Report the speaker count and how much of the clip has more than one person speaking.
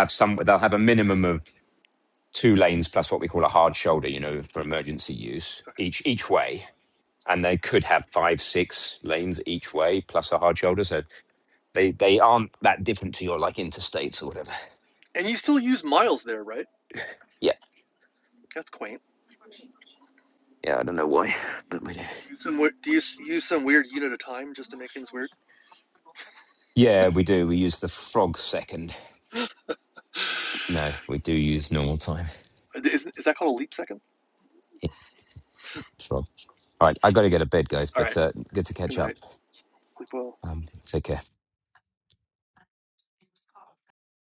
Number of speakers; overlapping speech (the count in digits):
2, about 1%